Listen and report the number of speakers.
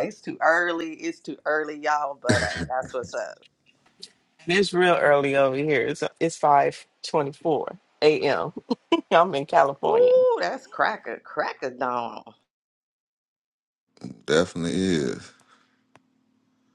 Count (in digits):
3